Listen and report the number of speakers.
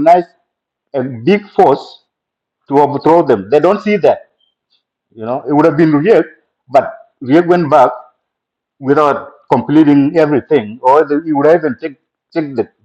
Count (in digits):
1